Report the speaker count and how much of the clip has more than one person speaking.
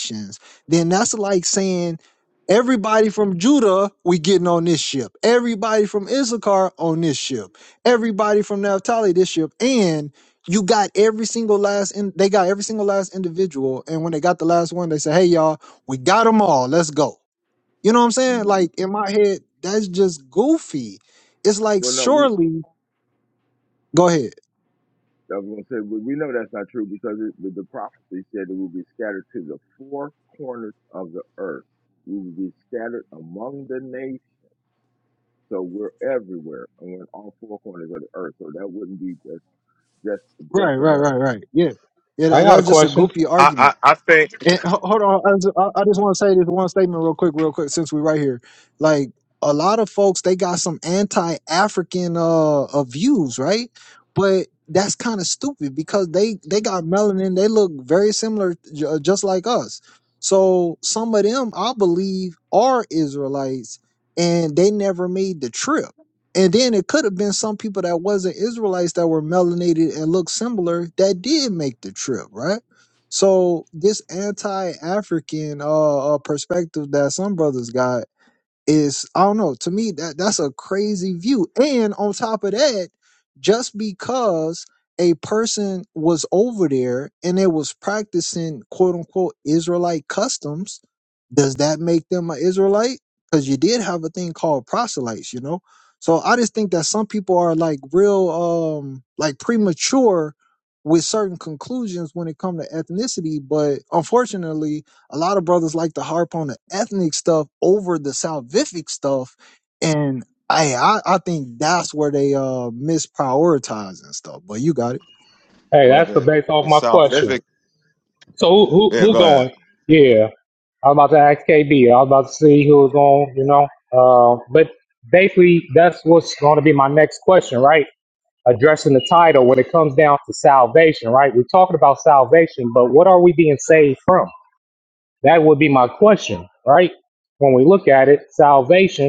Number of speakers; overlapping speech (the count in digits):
4, about 3%